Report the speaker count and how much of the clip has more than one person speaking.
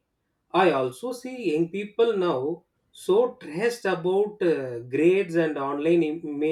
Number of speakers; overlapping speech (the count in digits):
1, no overlap